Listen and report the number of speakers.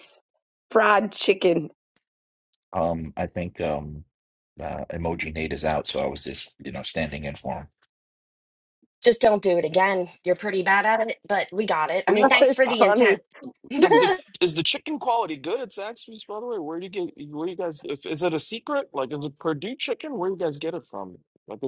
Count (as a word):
four